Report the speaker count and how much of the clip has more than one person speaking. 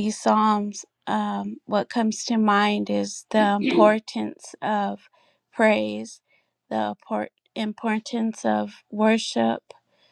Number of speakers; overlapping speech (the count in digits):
1, no overlap